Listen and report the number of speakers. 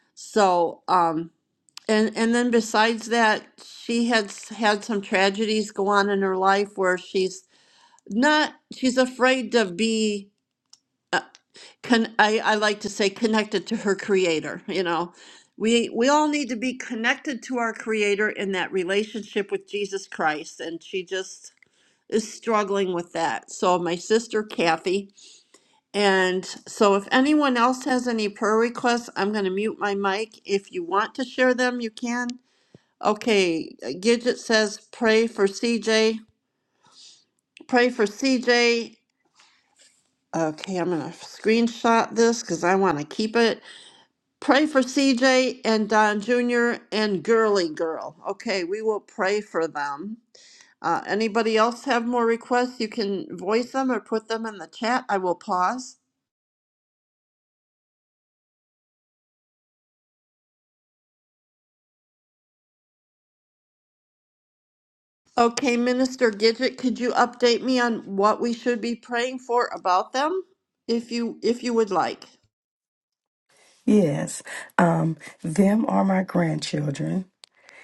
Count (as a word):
two